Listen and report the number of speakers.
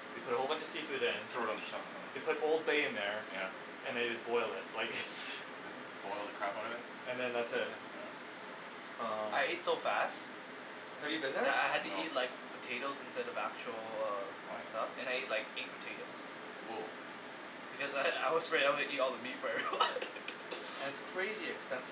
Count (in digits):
3